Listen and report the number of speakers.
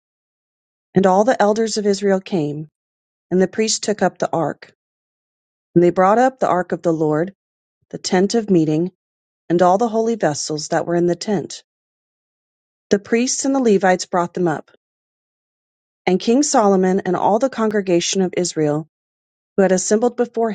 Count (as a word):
one